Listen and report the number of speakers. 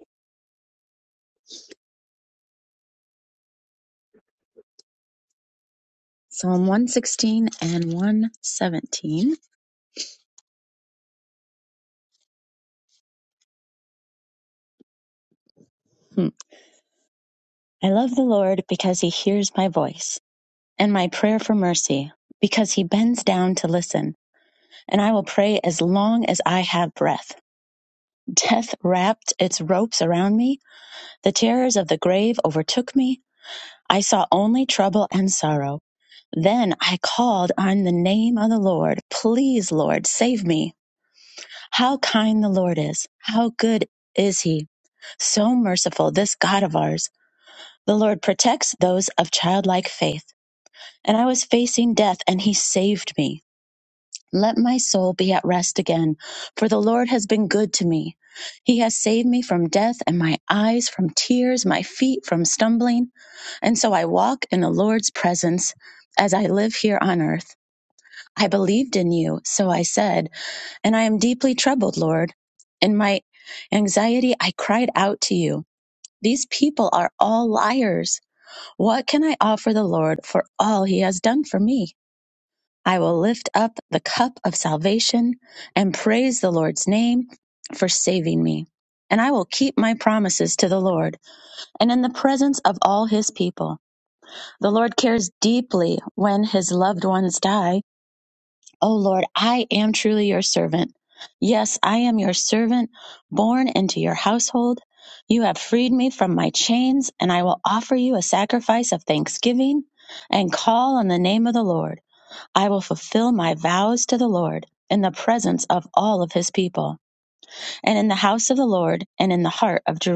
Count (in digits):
1